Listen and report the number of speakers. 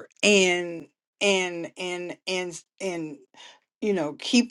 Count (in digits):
1